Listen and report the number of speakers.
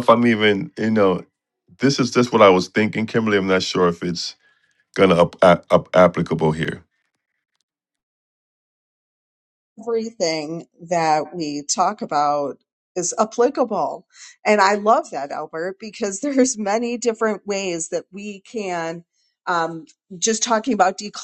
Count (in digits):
2